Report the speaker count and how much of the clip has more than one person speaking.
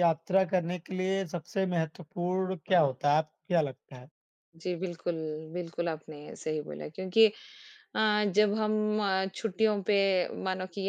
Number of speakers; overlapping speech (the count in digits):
2, no overlap